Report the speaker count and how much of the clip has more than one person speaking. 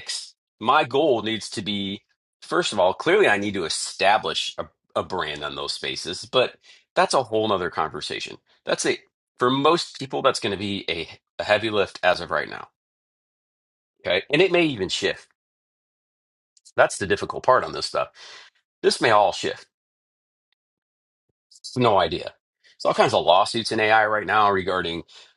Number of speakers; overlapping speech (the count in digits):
1, no overlap